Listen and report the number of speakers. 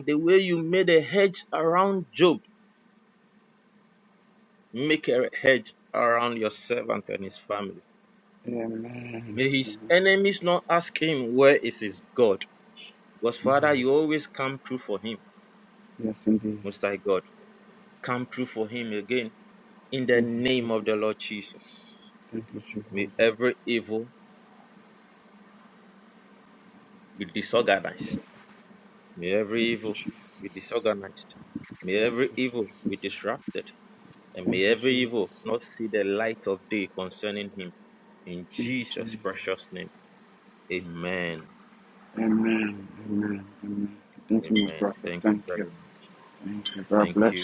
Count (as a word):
two